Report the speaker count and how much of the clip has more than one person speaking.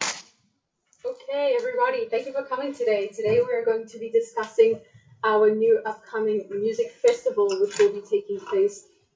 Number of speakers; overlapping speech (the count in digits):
1, no overlap